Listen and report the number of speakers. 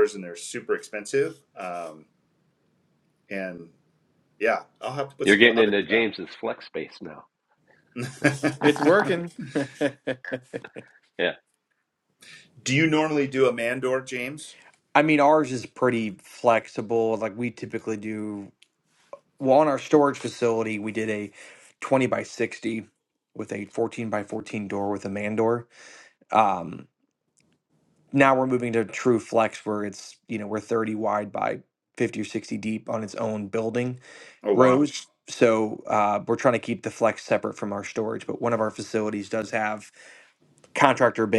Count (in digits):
3